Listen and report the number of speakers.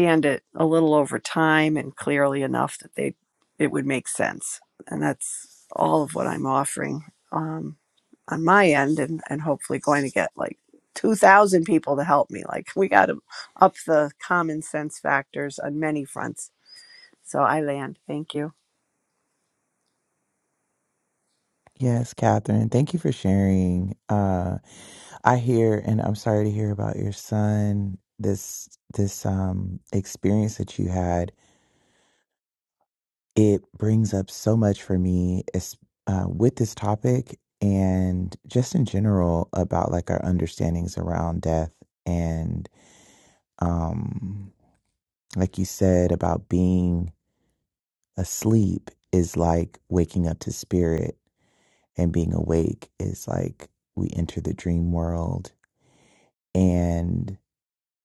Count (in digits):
2